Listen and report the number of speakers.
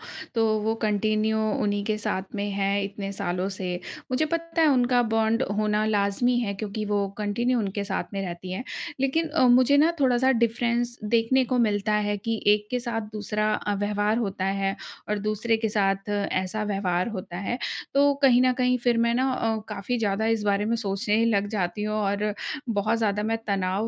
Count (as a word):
one